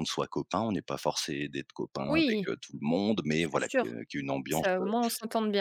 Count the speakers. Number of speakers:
2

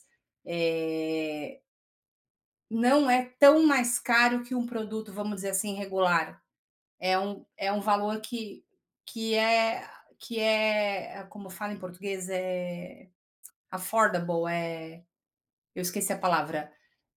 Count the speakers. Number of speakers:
1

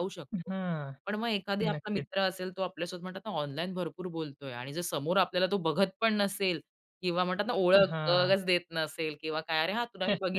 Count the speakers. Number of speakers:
2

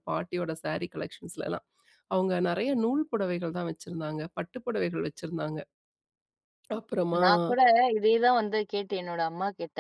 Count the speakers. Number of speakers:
2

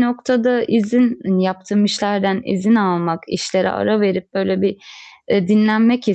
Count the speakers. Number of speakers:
1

